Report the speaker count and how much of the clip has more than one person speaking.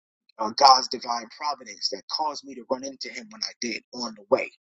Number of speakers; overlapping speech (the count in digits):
1, no overlap